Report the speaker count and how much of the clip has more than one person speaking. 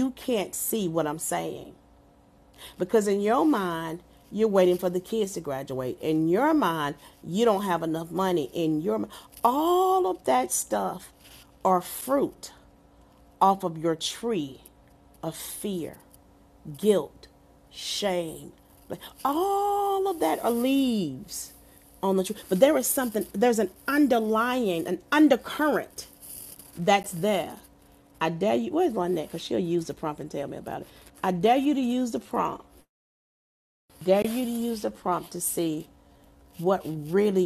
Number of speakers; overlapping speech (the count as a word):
one, no overlap